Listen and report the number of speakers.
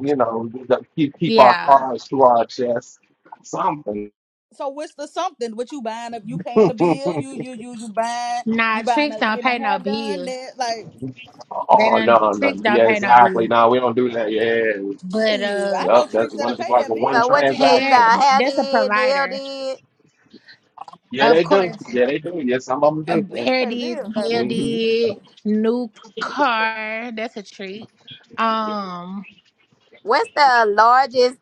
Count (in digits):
4